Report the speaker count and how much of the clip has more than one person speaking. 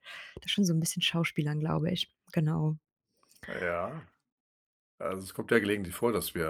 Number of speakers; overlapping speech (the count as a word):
two, no overlap